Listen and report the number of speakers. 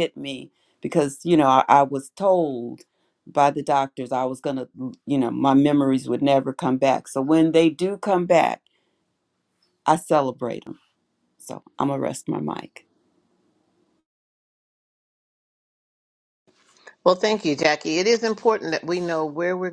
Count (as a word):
two